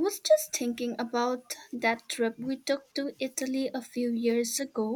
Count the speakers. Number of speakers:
1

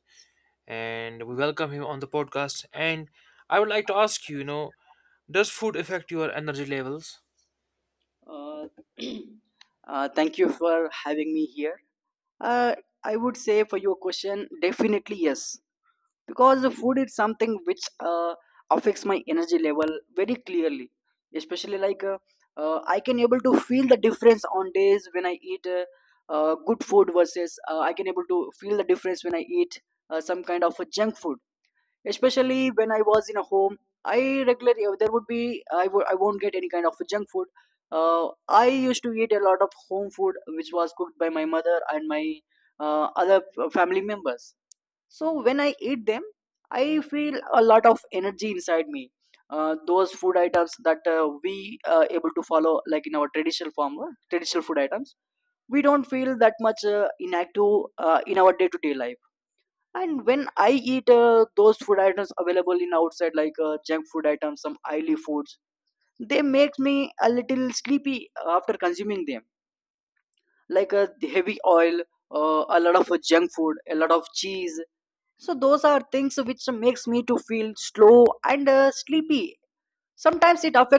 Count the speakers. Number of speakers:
2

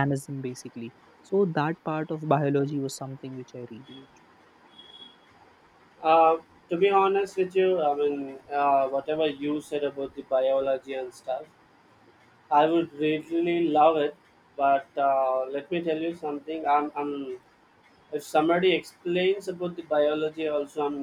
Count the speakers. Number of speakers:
2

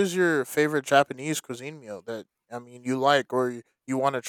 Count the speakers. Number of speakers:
1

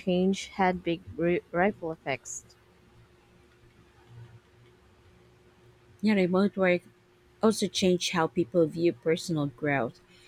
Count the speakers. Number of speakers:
2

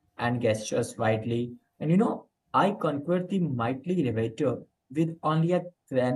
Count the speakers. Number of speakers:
1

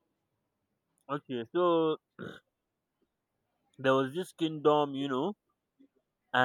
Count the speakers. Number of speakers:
1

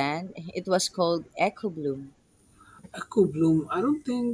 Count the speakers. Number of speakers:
2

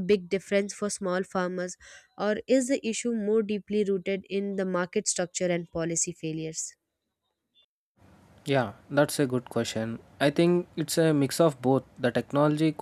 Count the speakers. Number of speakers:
2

